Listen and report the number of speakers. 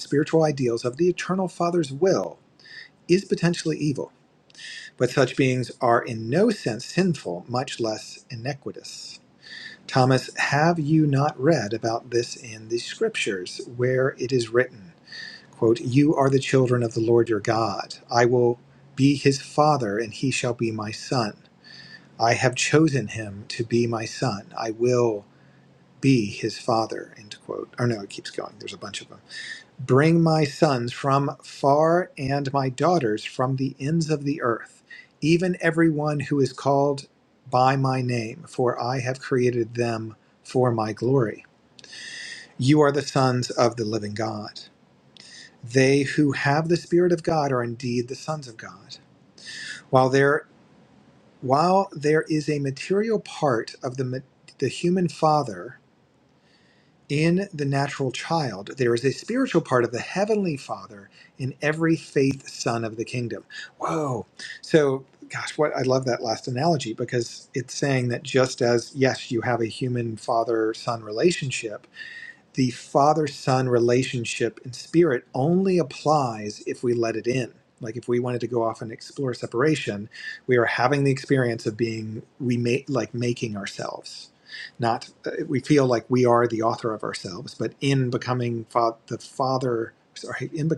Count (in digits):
1